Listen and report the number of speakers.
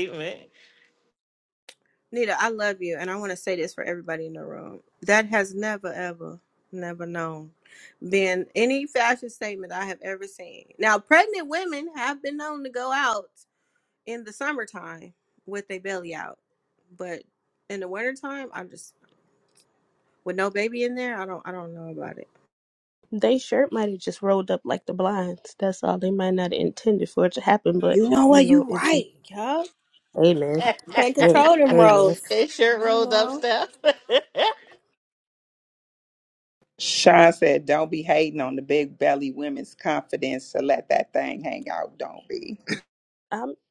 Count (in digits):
4